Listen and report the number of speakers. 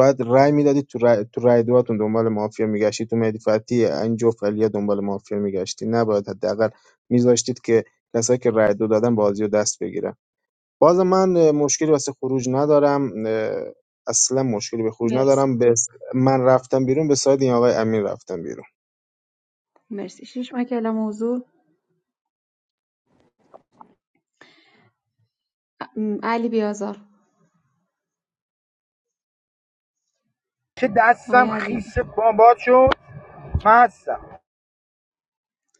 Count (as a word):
three